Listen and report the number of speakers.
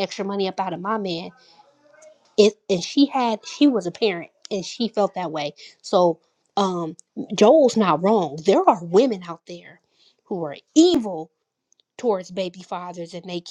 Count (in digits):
1